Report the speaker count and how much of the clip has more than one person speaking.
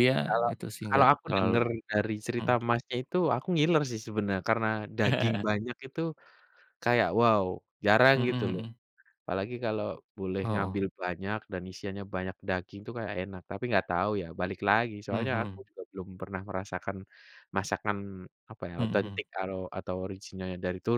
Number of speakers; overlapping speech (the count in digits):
2, about 15%